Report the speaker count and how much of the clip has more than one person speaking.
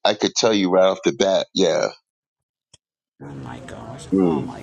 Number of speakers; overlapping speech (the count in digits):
2, about 8%